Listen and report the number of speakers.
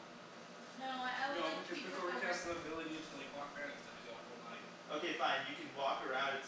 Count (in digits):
3